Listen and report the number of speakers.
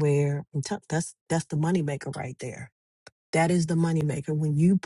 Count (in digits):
1